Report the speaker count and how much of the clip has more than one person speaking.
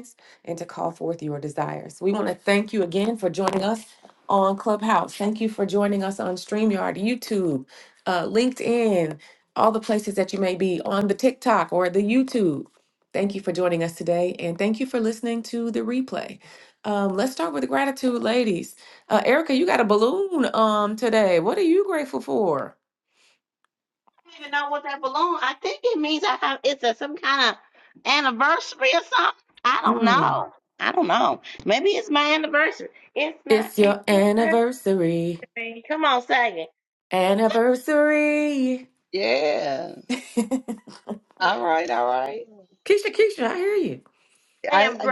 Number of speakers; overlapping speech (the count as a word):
three, about 5%